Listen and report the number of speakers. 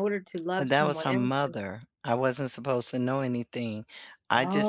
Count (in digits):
2